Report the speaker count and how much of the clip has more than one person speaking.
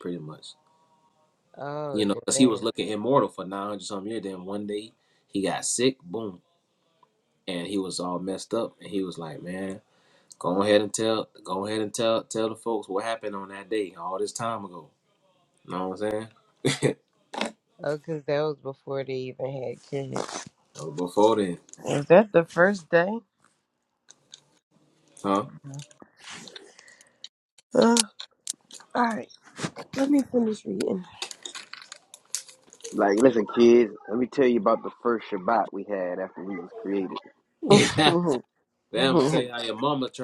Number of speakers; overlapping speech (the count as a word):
three, about 3%